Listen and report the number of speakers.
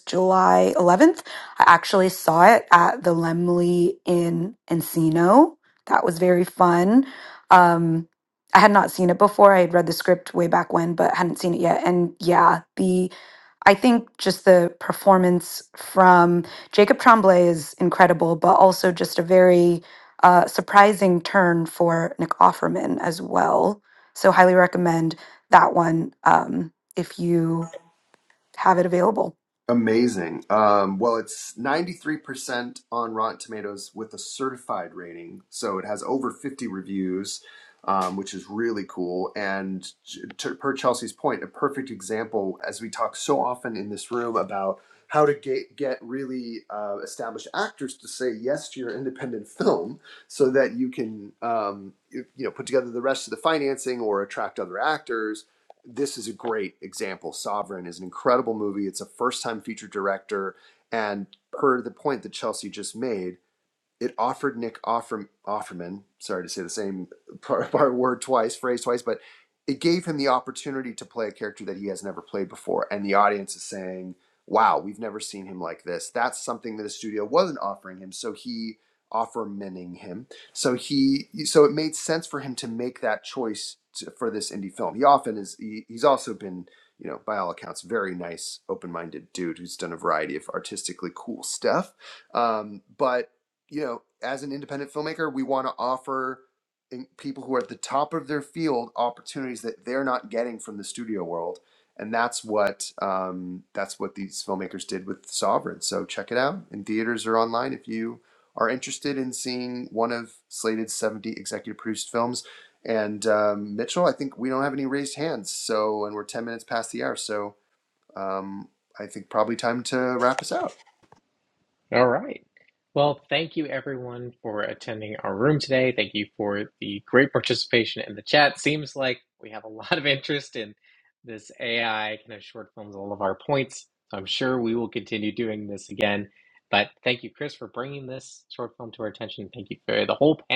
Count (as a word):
three